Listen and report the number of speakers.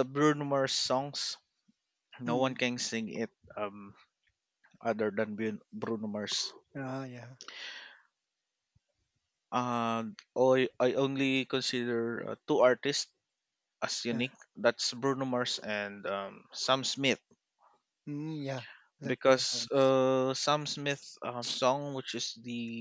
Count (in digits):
2